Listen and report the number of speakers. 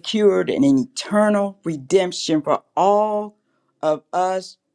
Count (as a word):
one